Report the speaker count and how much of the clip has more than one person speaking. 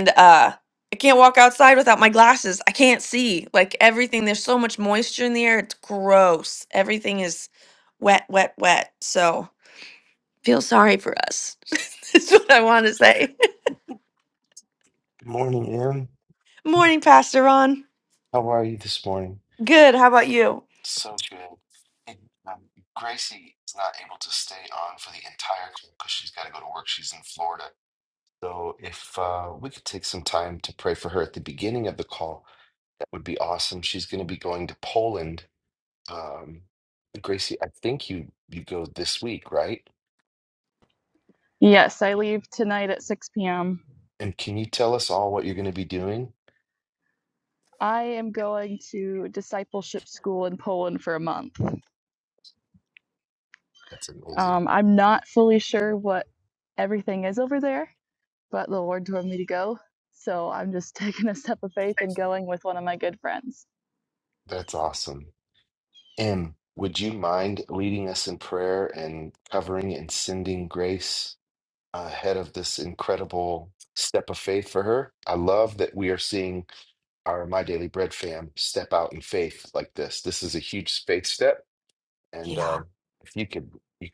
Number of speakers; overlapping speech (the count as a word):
three, about 1%